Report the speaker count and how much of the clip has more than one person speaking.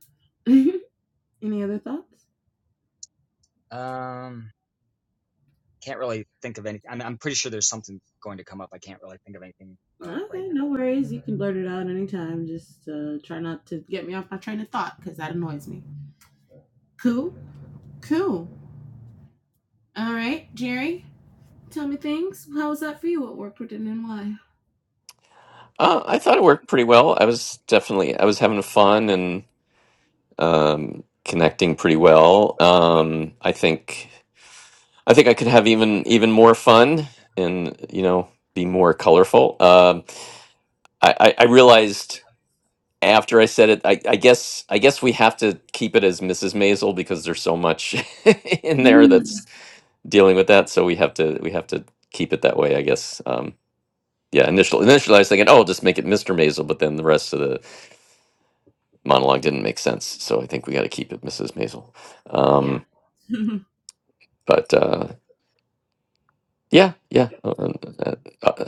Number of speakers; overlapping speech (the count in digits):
3, about 1%